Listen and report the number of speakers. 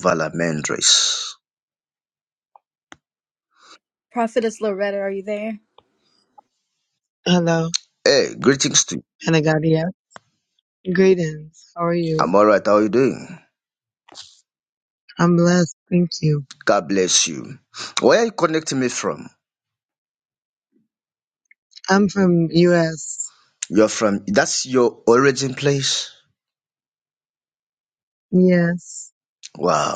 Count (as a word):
three